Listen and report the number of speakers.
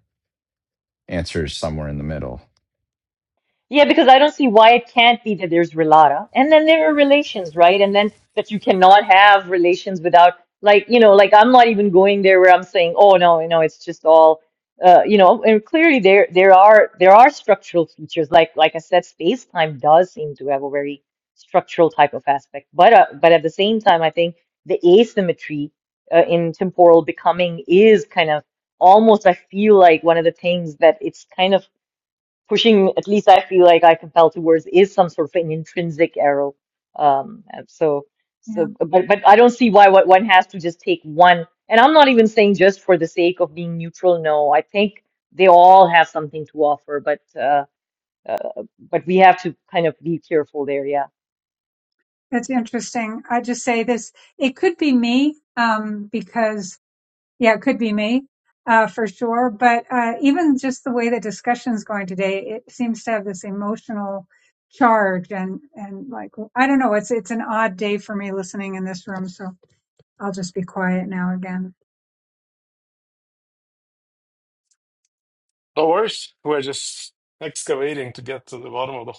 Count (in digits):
4